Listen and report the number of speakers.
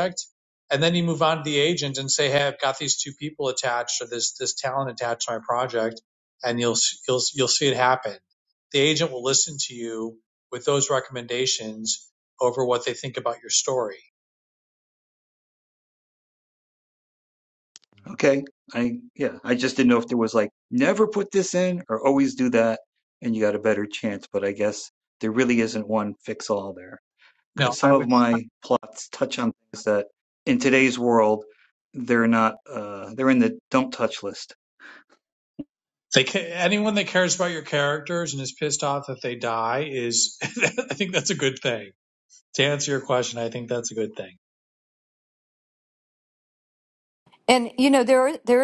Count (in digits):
3